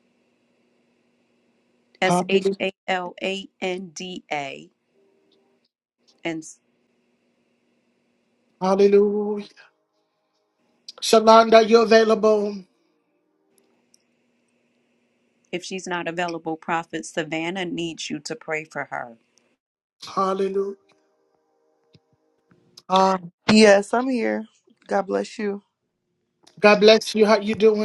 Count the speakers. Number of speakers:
three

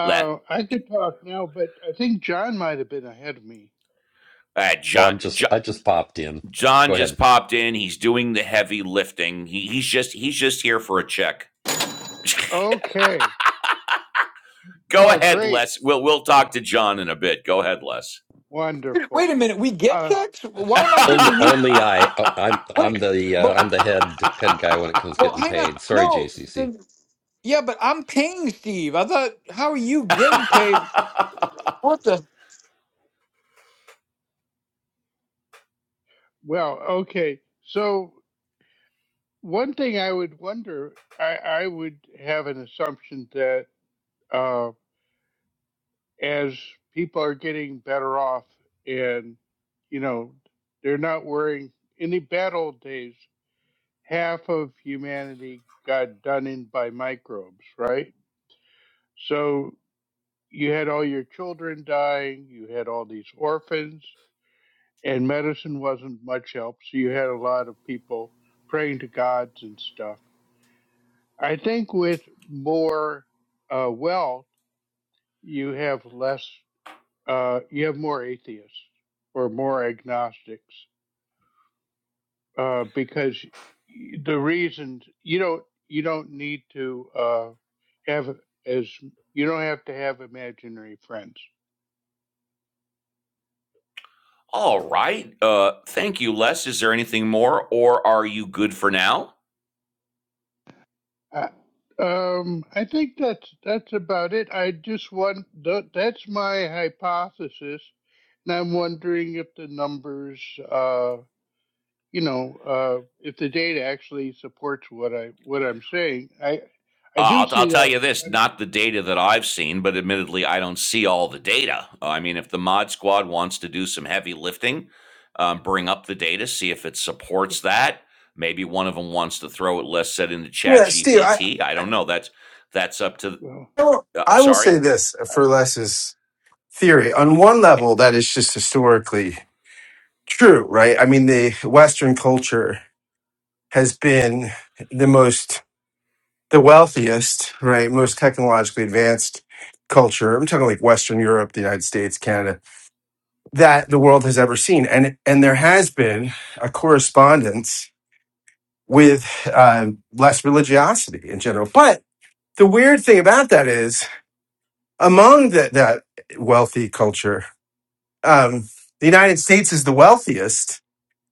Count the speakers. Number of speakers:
five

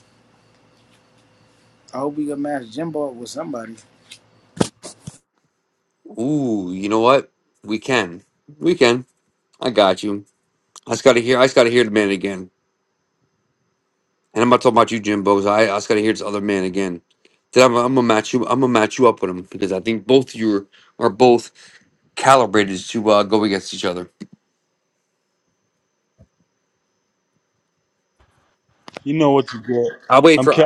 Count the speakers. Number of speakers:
three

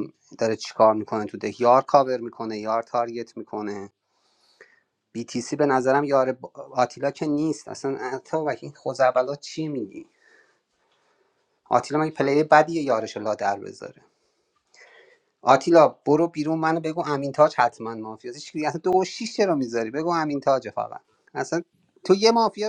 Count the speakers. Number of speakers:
one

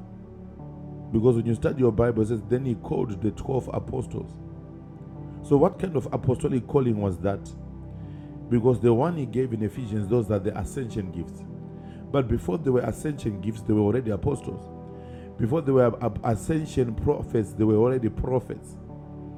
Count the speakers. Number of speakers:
one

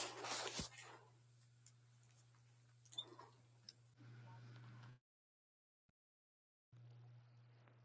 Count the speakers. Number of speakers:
zero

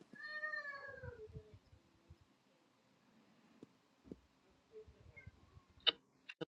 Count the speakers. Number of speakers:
zero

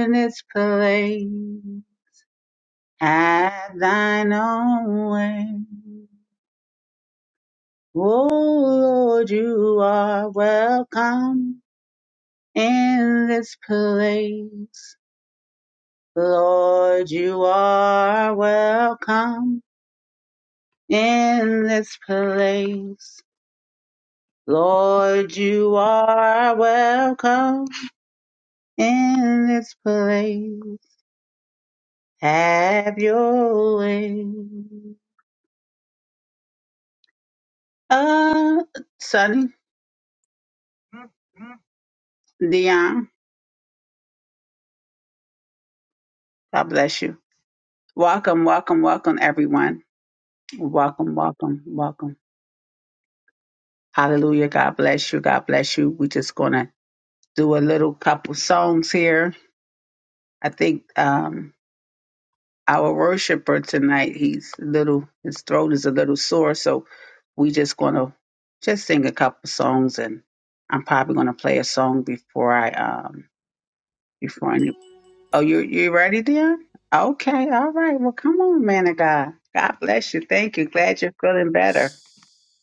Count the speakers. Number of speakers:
one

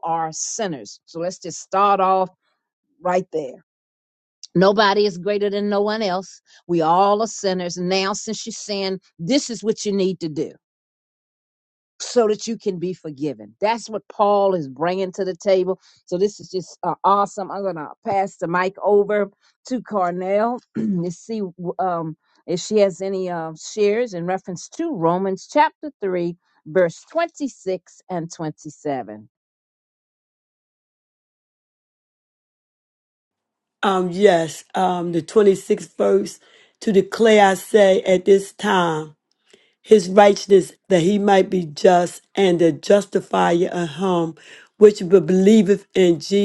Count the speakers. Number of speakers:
two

